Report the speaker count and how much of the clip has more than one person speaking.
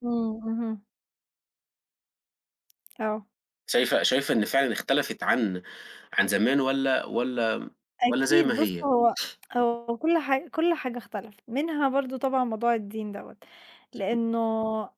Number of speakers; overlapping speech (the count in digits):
2, about 5%